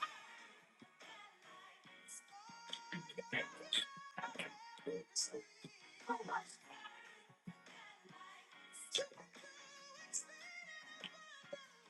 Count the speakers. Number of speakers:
0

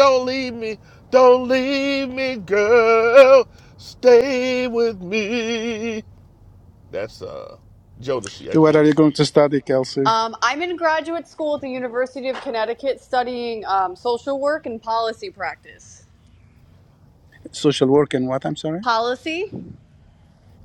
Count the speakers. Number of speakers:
3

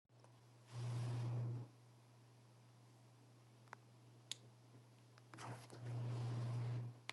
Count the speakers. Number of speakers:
0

